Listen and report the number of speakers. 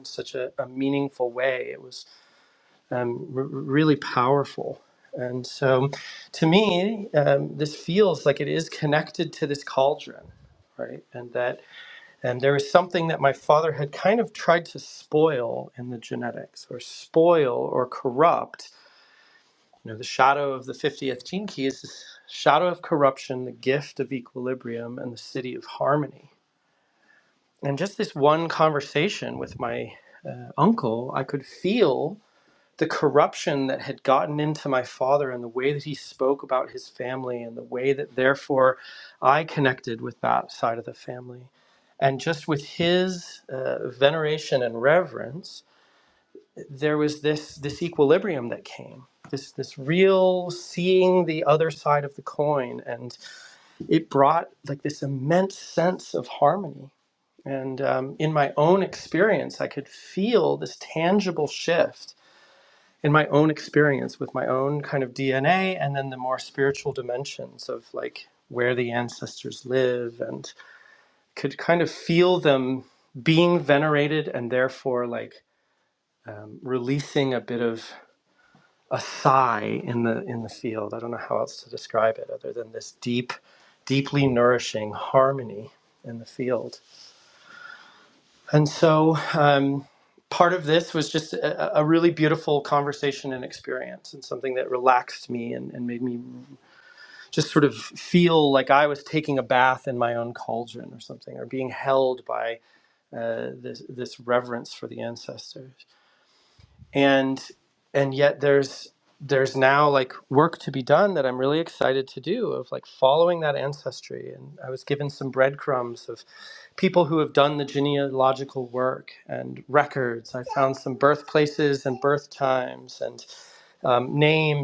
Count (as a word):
one